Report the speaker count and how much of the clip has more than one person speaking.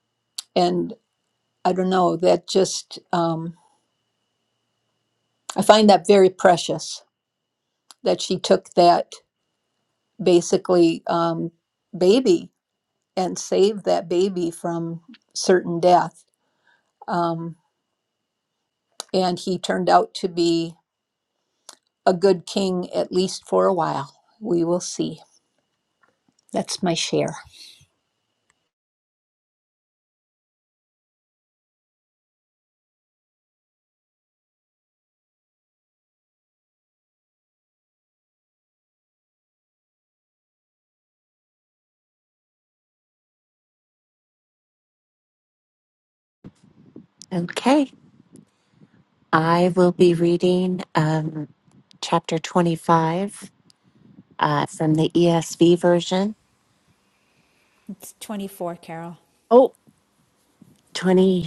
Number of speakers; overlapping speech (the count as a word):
three, no overlap